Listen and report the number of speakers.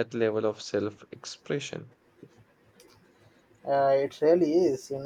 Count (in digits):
2